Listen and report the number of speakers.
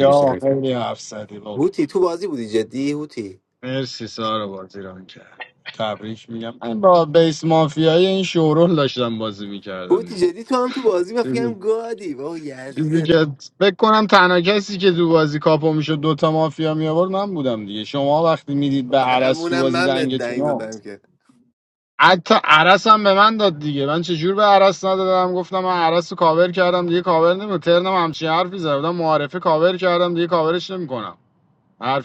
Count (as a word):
two